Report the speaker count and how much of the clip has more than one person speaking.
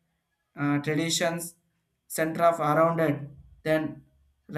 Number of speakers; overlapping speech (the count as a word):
one, no overlap